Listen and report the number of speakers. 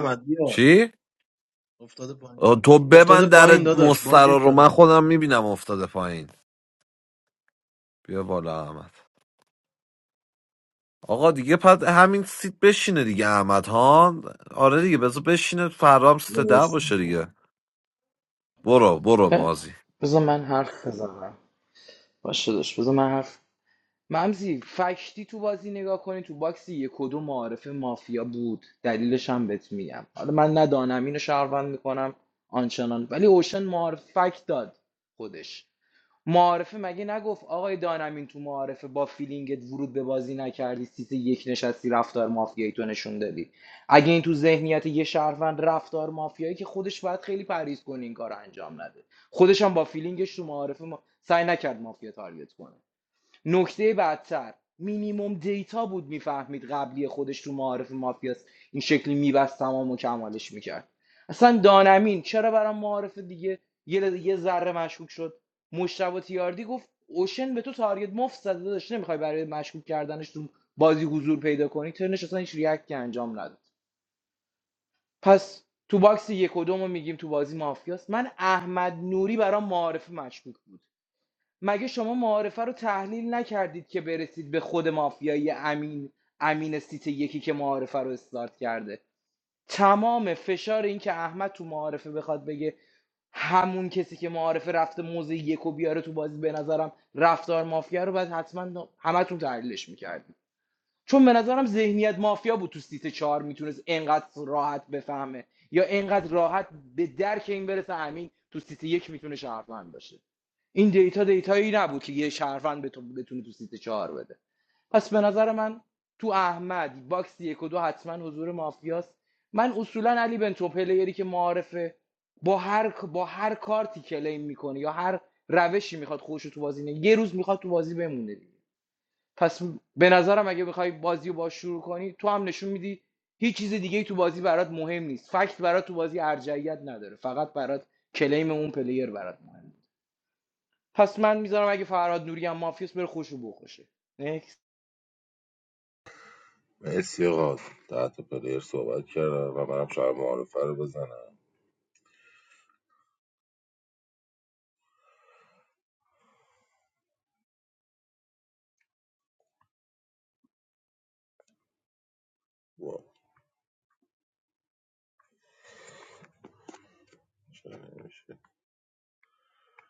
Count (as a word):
four